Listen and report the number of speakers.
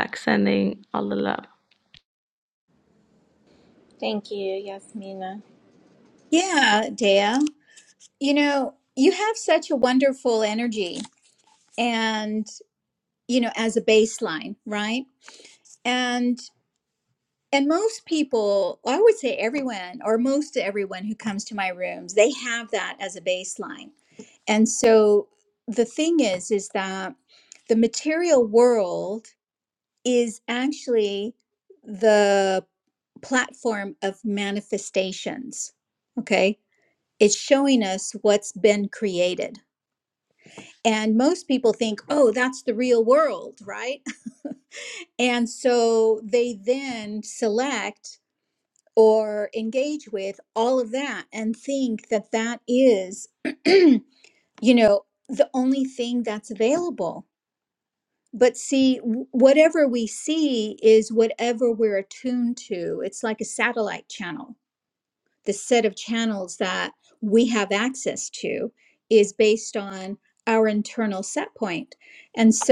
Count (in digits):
3